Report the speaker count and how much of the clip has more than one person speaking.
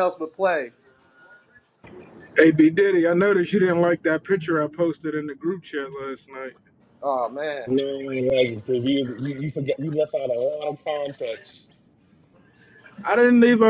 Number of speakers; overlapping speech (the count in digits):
3, under 1%